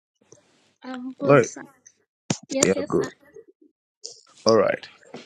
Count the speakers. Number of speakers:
2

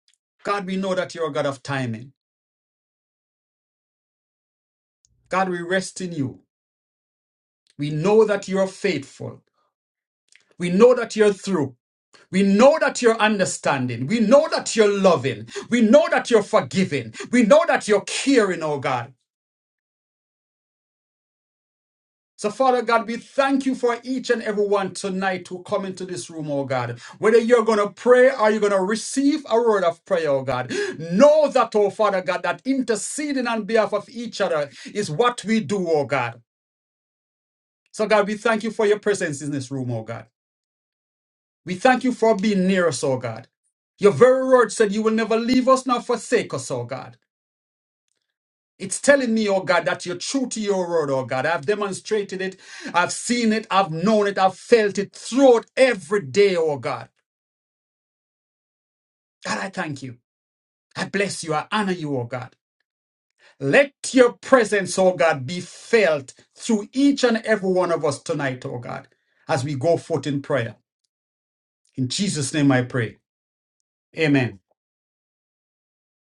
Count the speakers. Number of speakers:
1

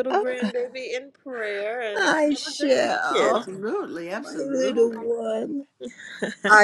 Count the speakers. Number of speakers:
3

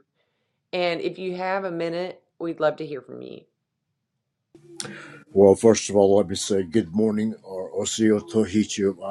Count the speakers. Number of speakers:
2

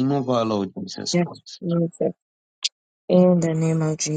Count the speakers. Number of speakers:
2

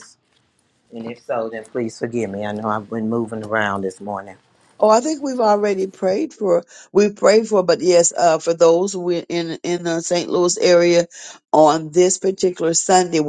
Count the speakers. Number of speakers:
2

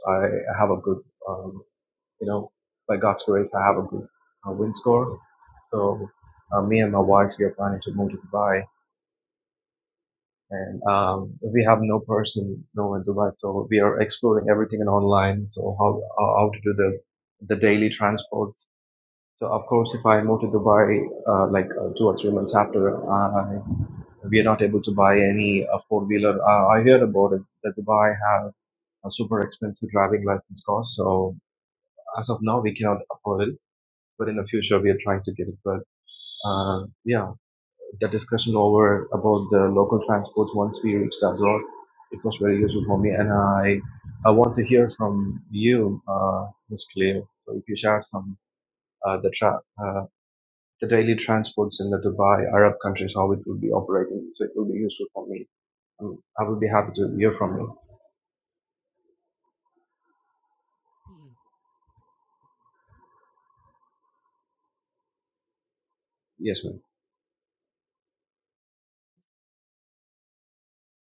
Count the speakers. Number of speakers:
1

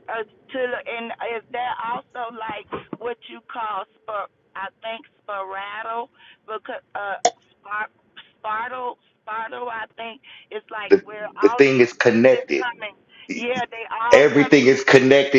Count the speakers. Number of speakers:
2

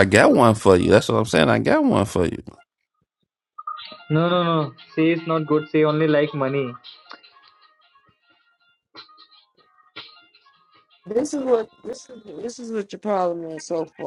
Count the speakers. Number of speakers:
3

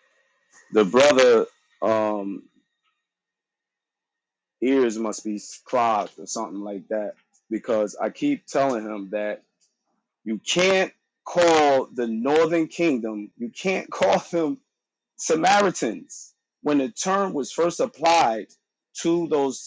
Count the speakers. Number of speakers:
1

